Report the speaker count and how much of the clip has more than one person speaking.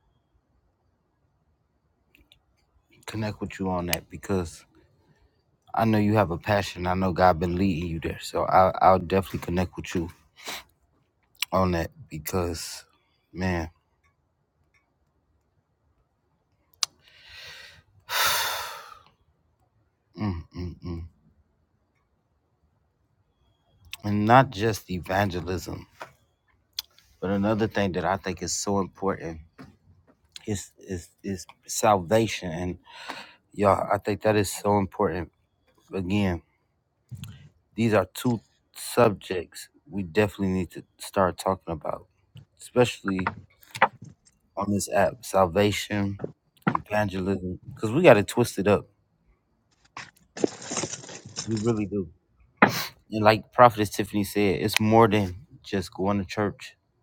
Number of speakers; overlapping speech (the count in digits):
1, no overlap